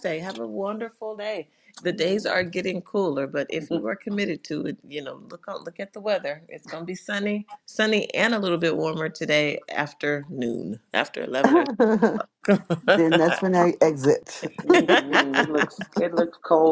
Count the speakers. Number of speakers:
3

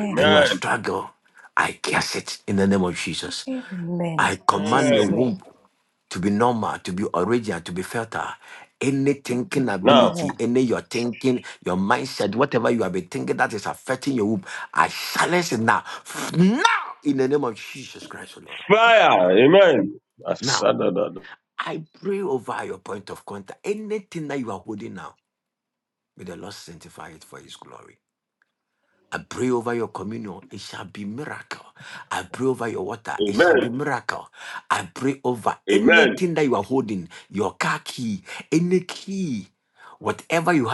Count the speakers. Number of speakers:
3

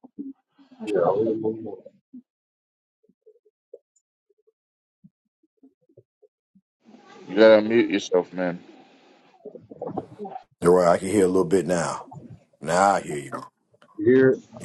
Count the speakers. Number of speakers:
3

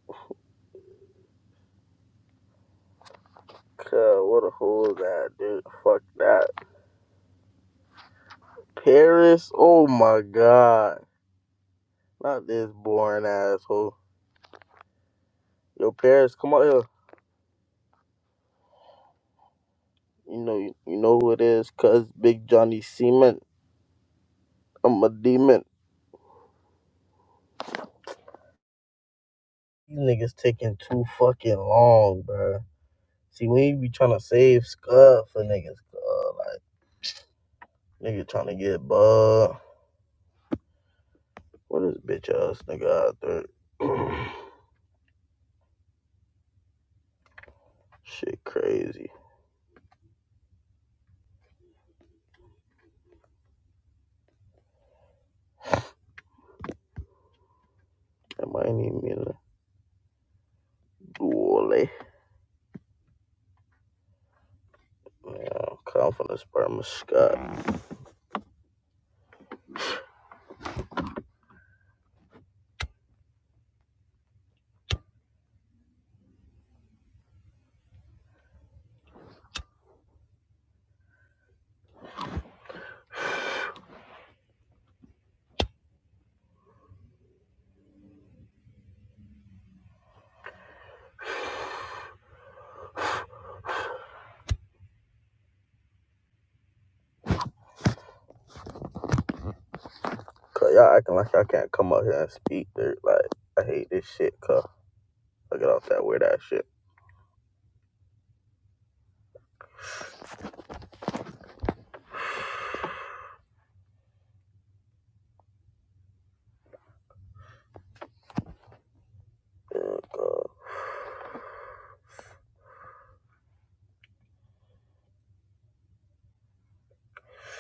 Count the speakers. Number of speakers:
1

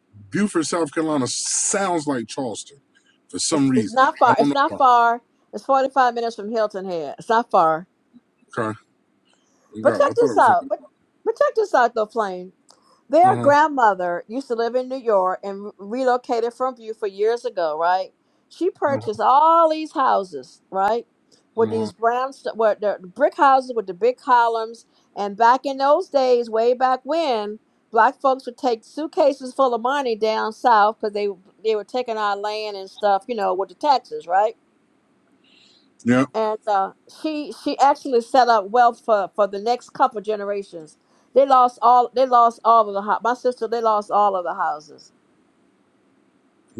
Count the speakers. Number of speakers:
2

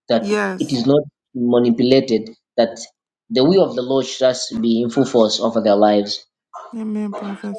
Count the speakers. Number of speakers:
2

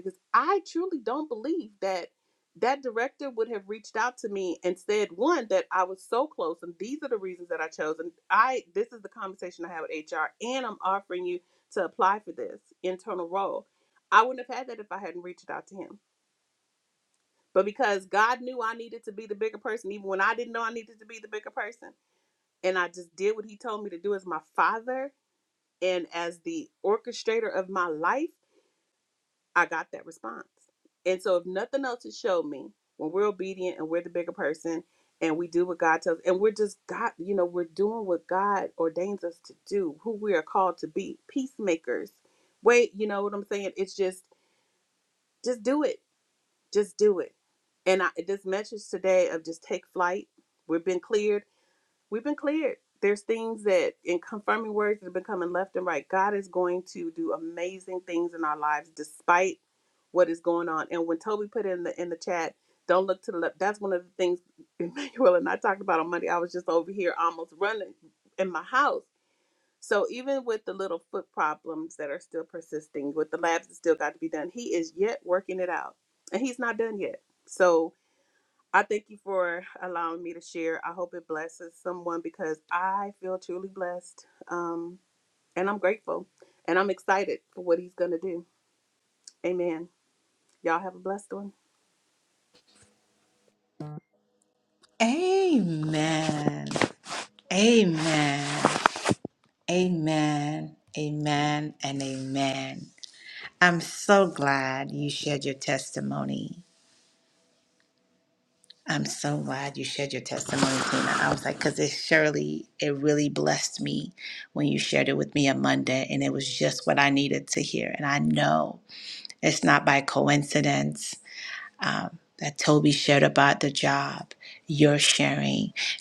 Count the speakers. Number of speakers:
2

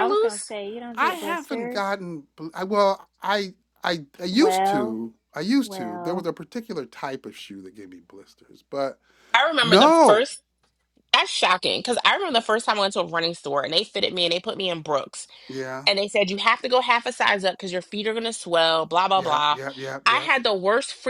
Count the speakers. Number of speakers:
3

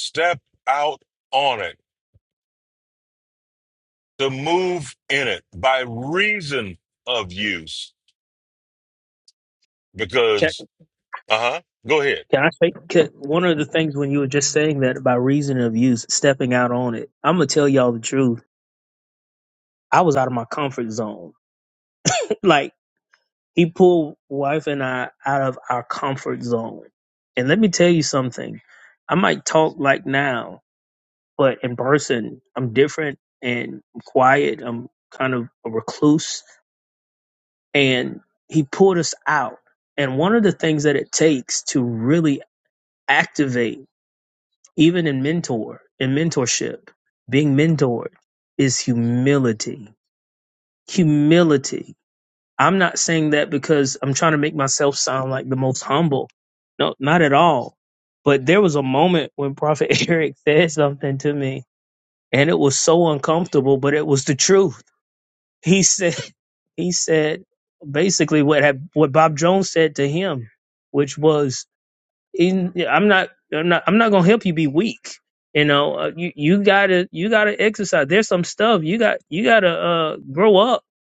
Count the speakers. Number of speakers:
2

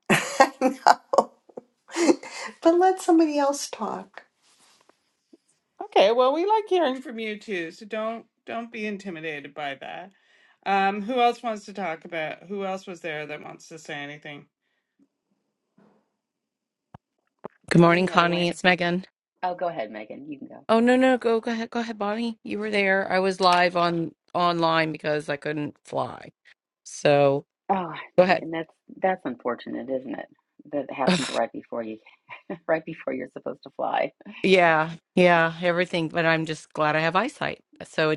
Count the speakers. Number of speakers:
4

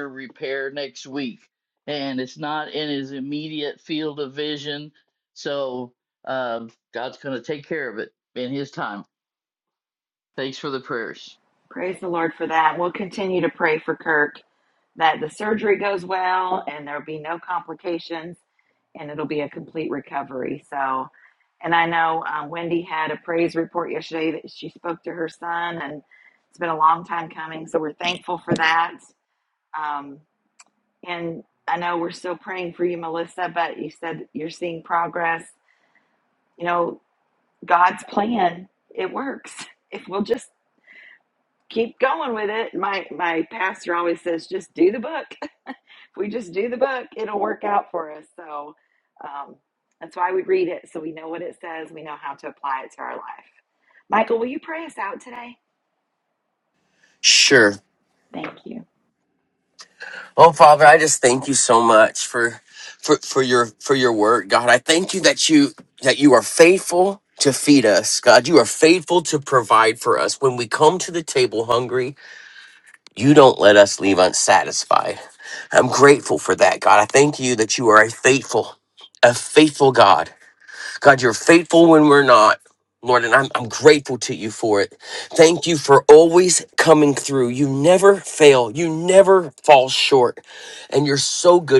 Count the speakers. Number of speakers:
3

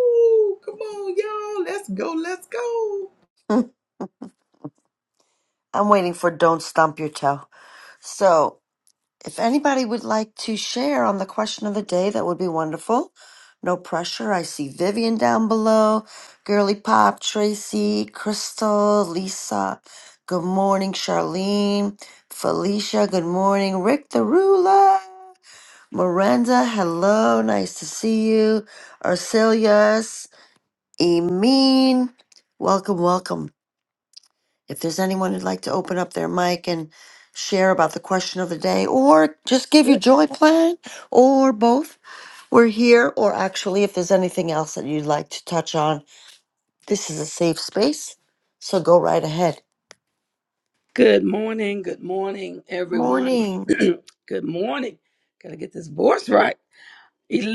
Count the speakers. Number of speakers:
3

